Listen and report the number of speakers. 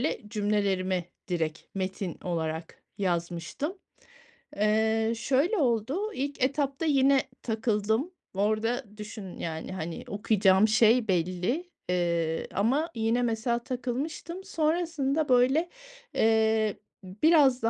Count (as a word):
one